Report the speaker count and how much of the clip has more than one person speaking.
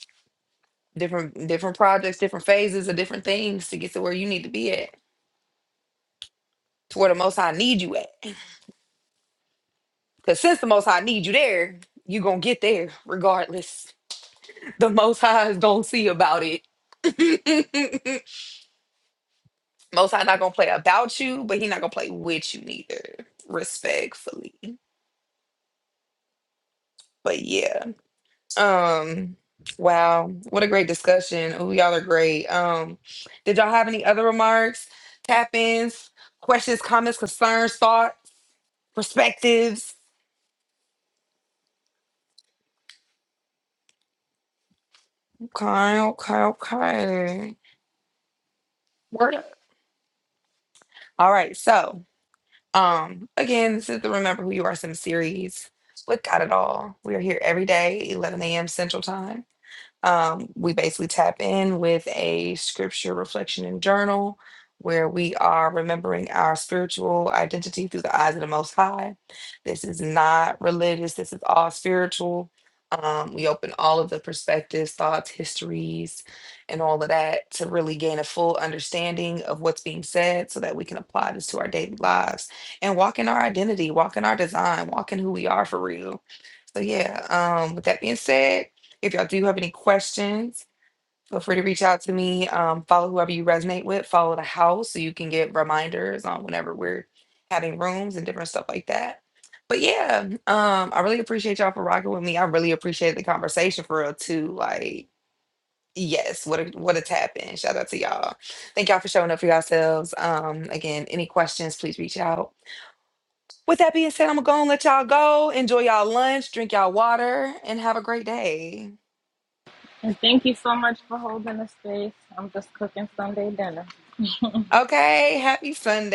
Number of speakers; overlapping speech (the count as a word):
two, no overlap